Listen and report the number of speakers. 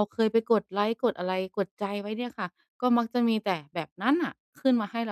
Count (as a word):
one